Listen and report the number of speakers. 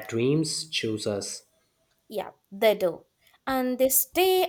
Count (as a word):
two